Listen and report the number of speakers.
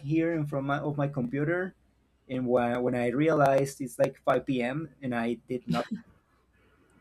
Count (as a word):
one